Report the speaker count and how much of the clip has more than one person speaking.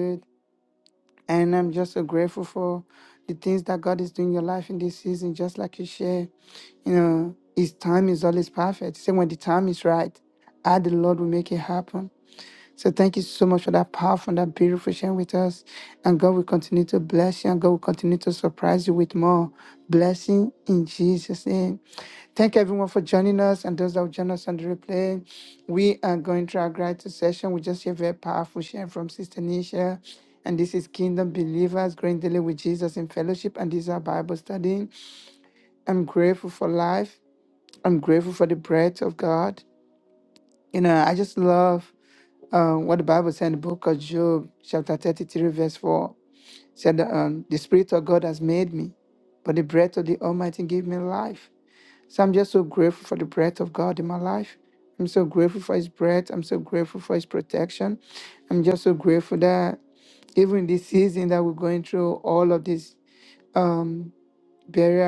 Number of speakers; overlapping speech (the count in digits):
1, no overlap